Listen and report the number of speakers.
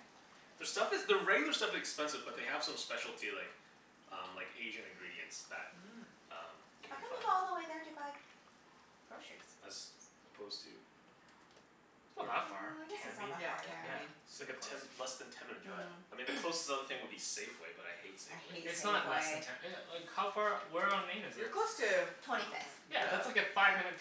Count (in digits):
4